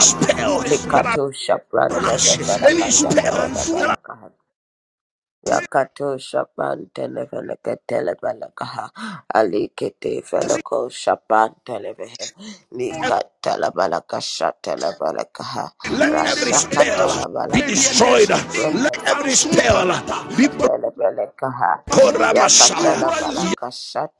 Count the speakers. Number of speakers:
2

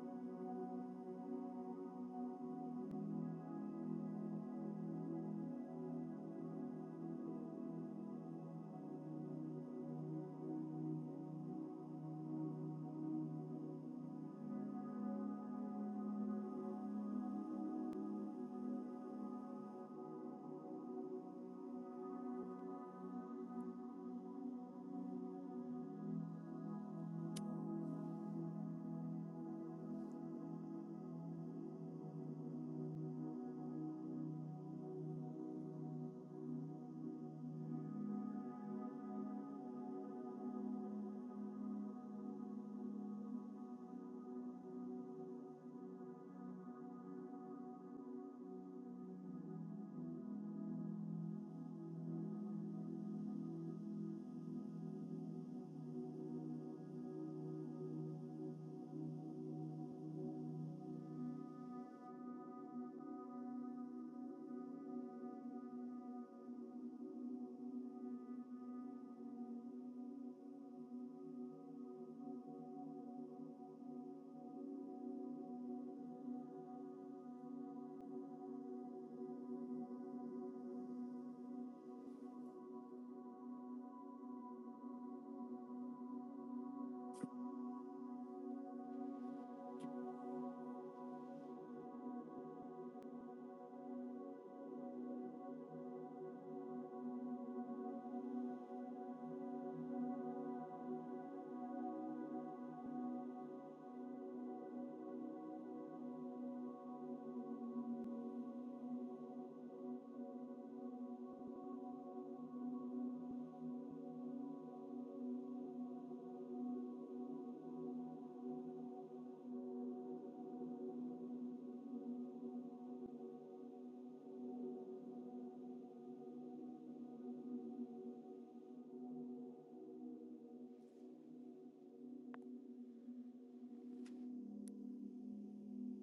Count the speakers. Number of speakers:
0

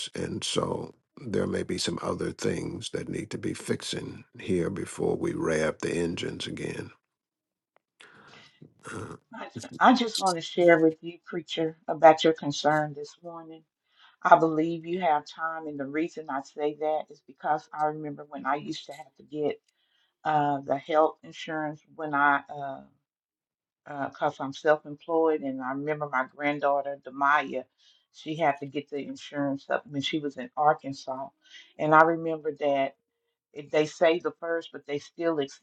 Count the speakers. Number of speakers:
2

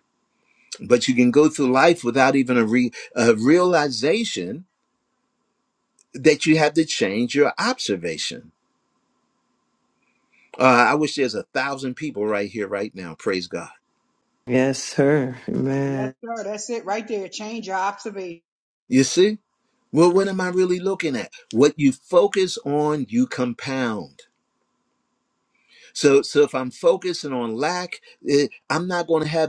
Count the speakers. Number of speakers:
3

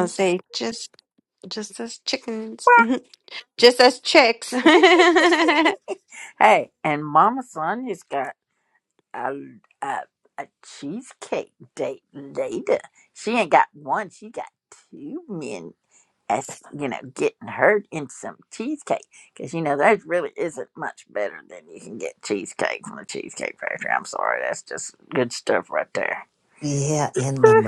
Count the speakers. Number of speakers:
3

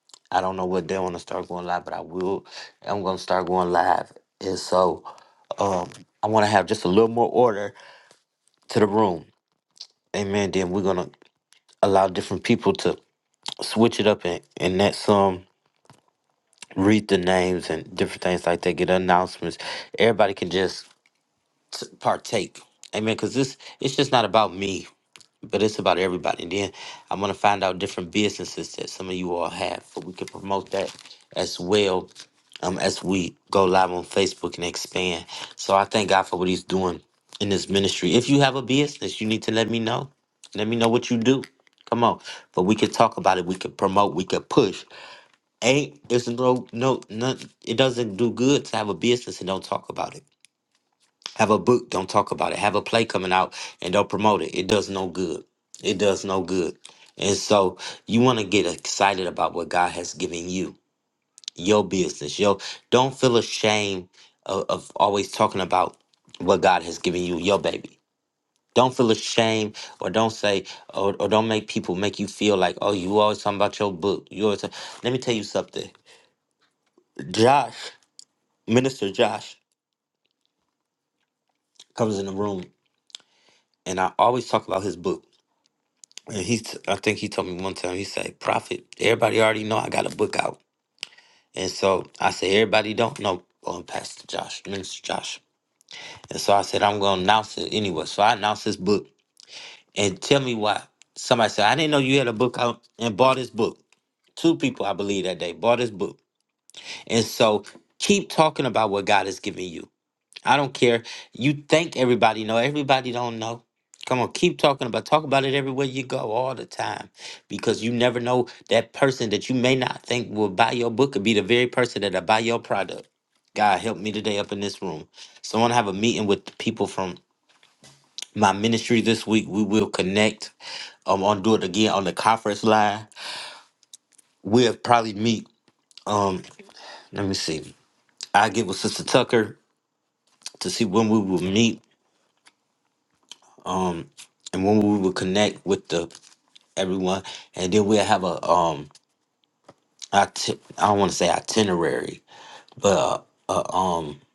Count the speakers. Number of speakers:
1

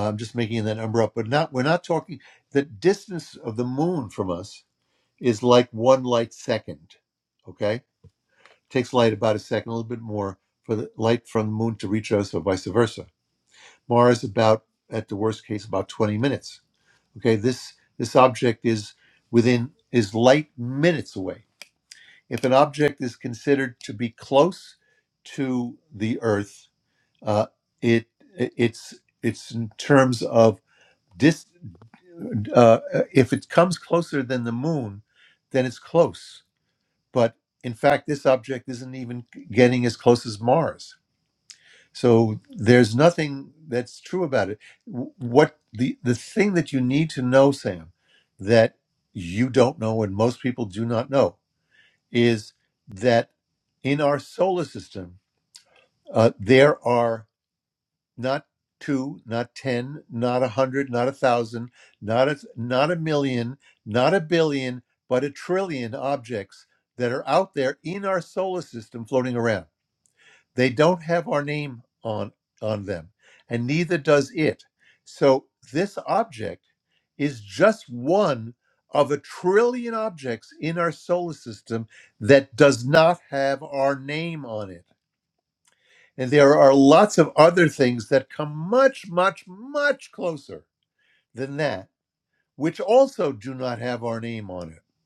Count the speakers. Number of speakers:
1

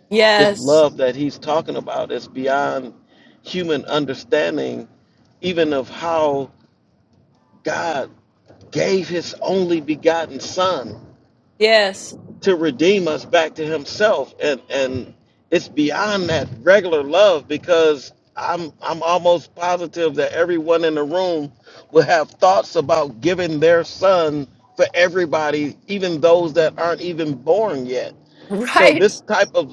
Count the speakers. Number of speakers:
2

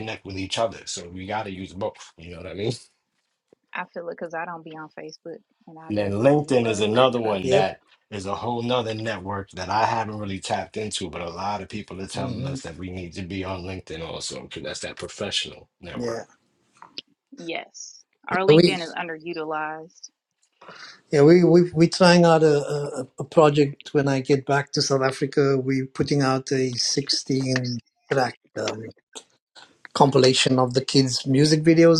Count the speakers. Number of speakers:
3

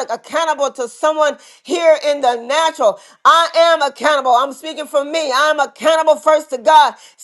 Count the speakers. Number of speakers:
1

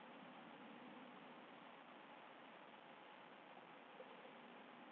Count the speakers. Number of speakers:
0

